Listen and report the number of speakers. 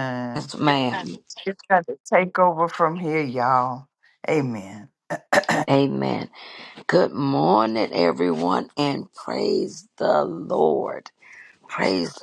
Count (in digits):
2